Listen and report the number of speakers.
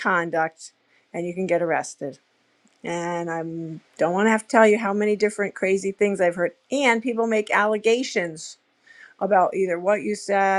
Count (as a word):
one